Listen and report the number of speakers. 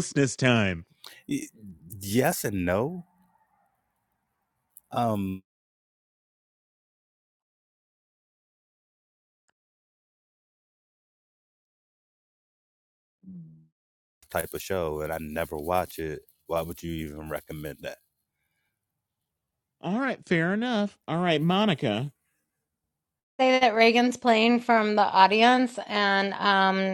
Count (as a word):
three